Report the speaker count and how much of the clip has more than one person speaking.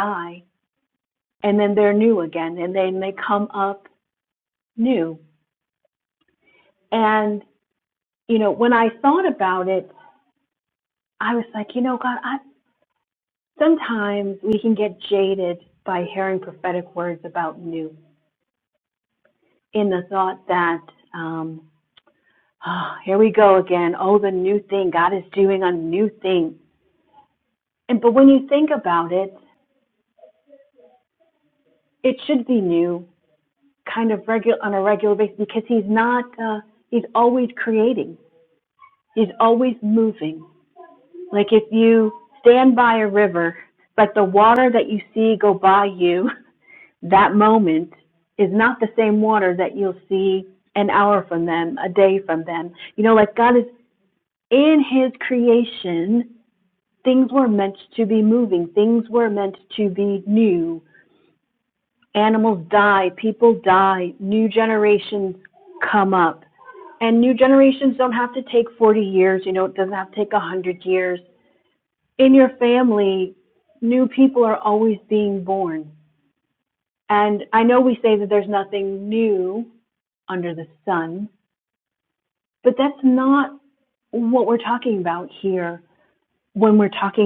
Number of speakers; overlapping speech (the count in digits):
1, no overlap